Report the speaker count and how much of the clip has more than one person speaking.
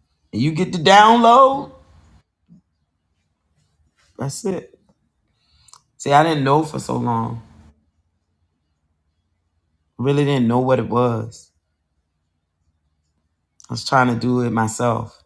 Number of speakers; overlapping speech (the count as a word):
one, no overlap